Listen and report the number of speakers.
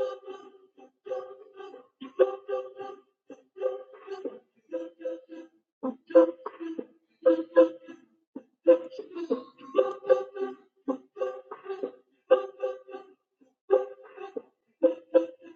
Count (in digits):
0